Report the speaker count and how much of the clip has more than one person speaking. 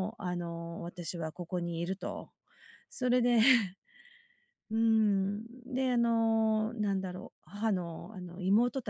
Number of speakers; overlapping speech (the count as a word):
one, no overlap